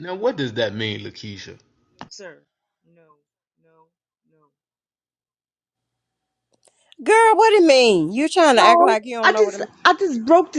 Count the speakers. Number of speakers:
three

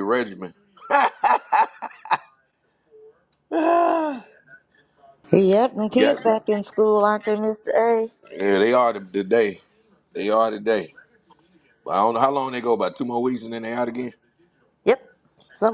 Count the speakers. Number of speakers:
two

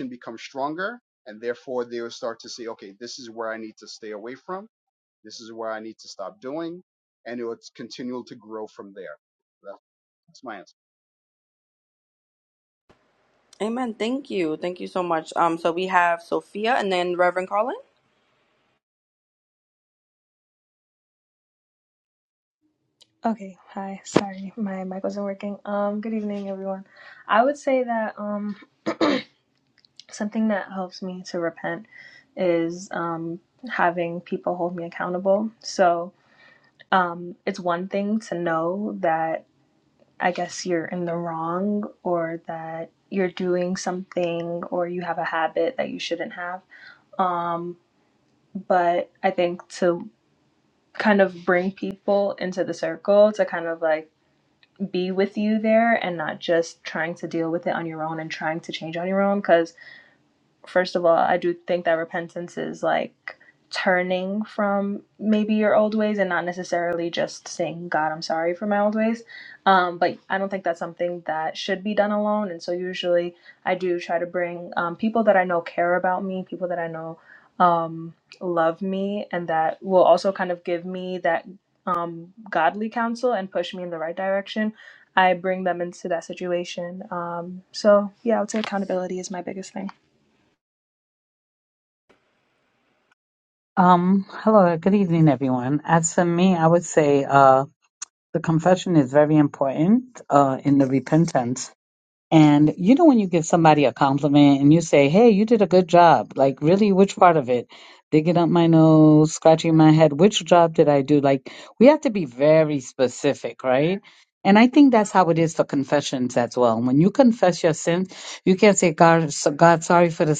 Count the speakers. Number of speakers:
four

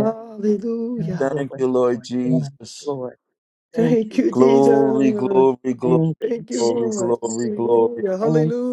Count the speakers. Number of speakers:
three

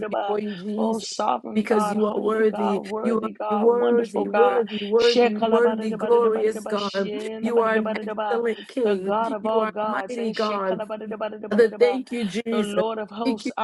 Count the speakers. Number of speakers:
two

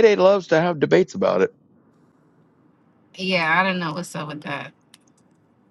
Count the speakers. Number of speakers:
two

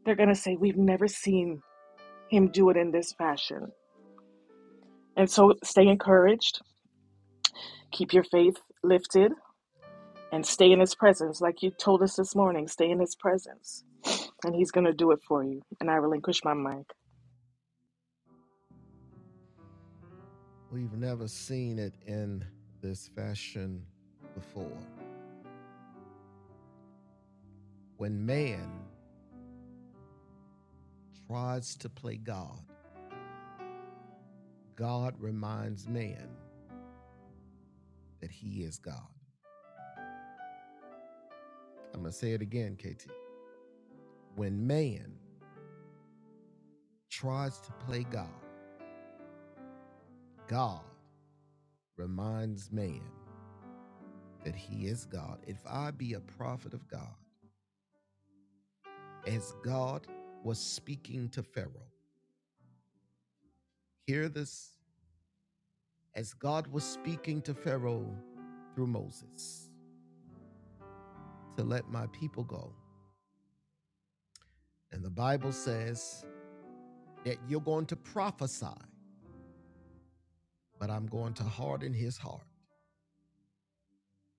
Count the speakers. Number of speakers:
two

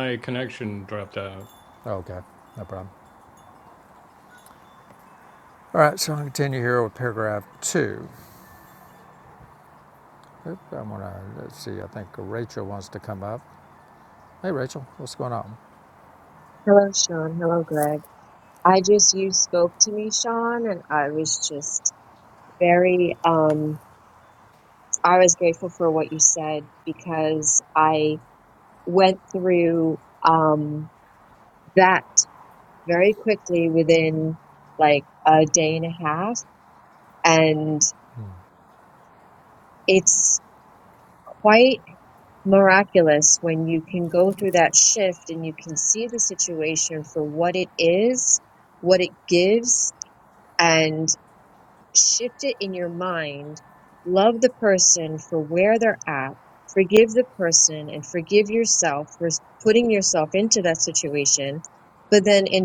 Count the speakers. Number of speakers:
three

